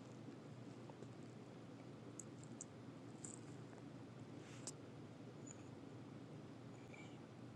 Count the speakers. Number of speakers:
zero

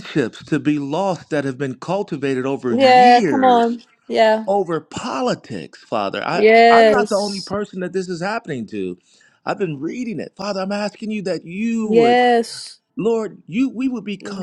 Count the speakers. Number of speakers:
two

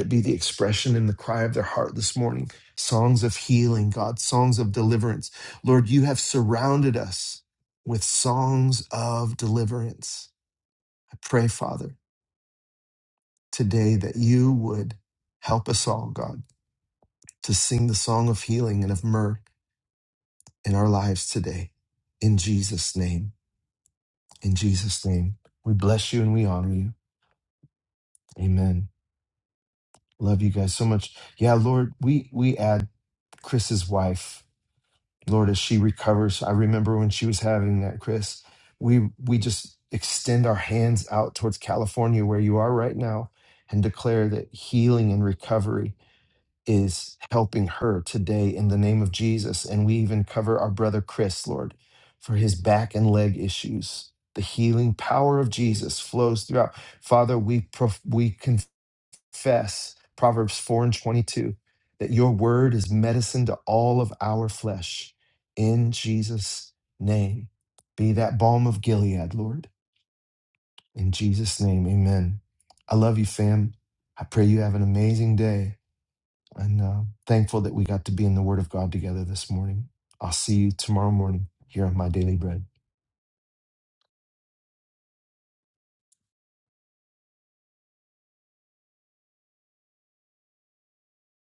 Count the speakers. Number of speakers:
one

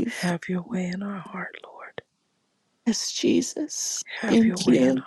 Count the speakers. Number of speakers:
two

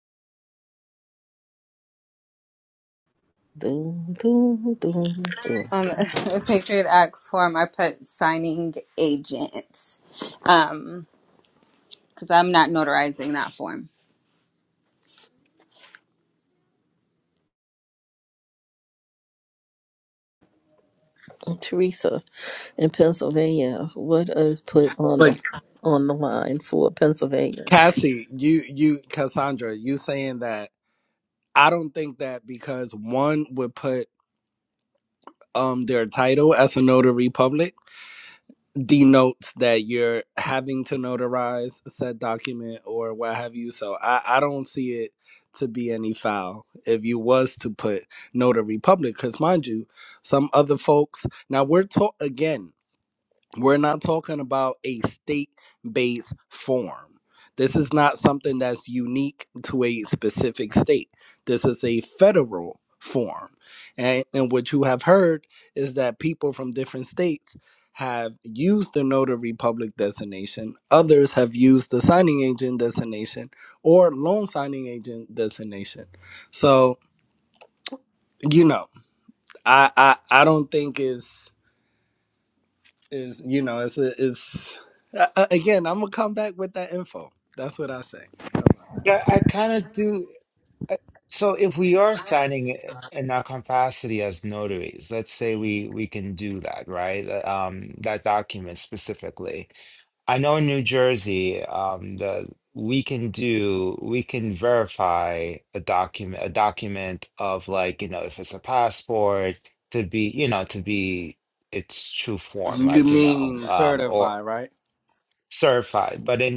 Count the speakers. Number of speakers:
four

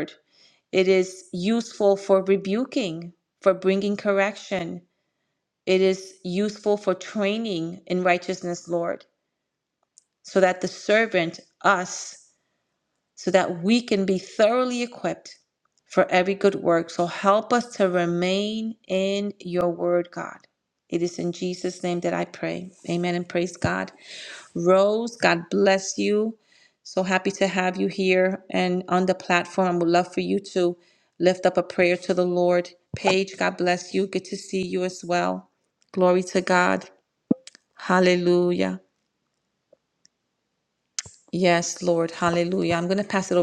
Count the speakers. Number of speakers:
one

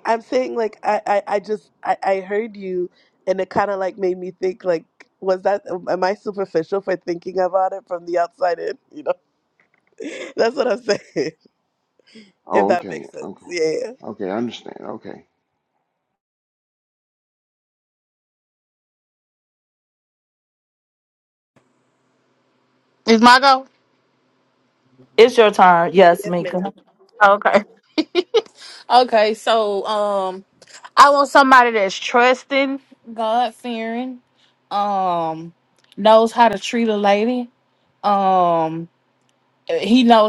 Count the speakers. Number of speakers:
four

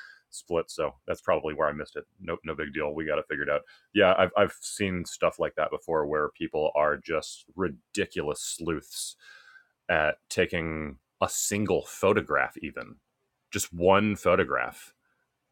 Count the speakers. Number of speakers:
one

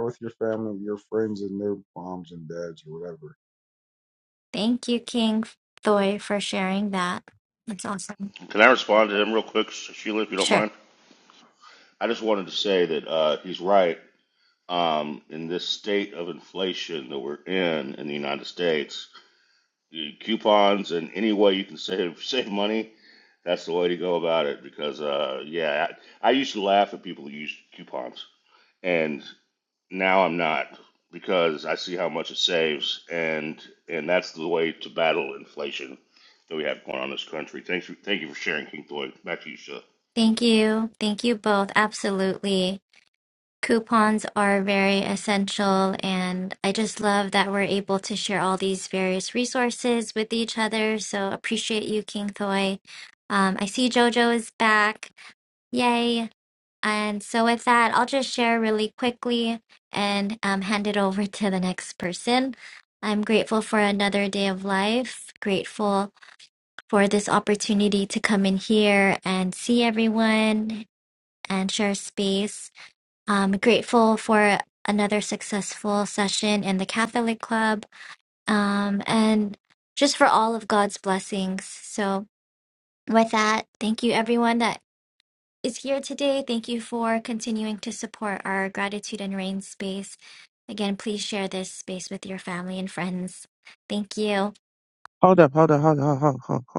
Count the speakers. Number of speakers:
four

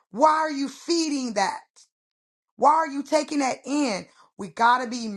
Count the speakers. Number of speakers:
one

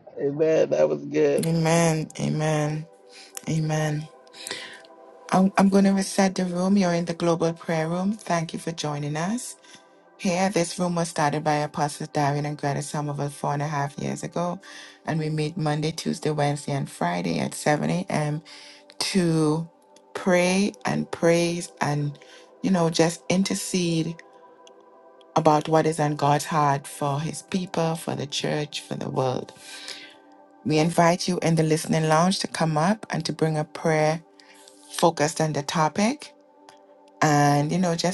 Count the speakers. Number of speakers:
two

